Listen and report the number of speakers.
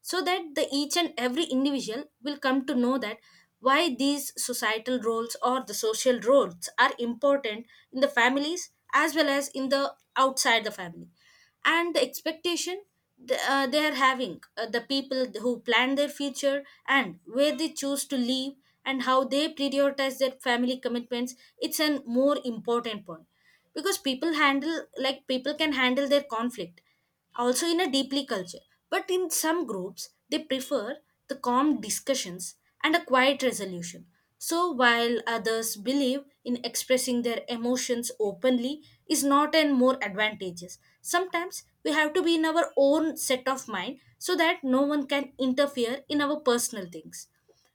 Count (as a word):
one